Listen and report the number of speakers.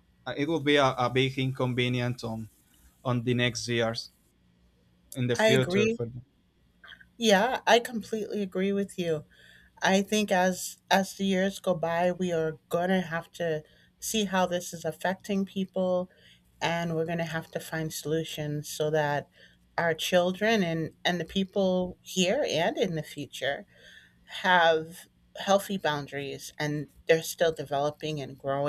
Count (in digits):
2